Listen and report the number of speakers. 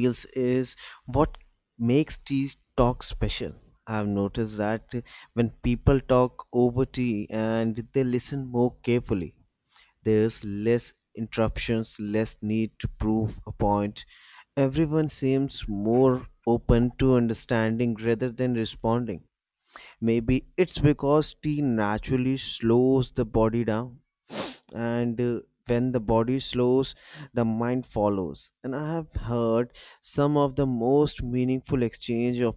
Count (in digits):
1